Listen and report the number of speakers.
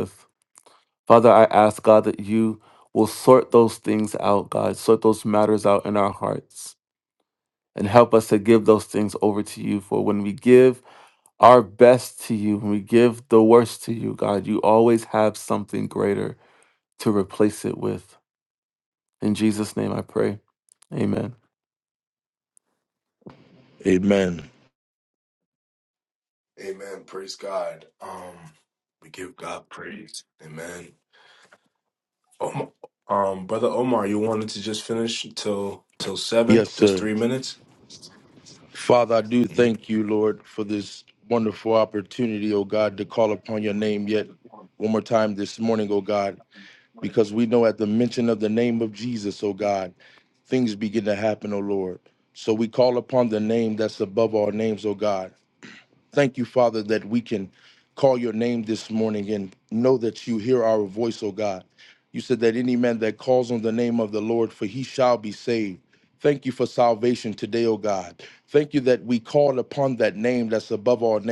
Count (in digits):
3